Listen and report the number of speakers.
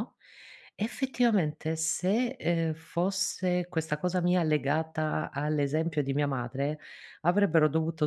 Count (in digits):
1